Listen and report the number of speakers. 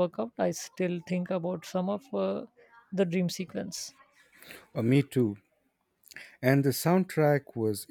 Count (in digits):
2